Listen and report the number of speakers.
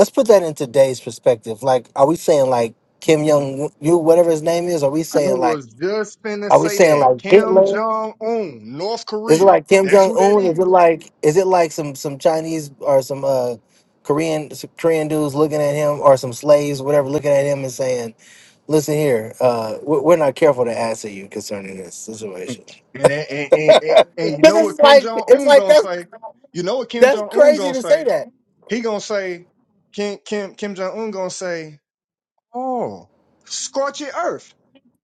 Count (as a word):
two